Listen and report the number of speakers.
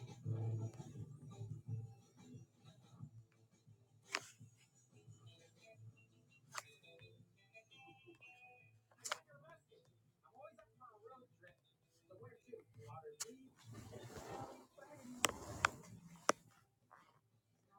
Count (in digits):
0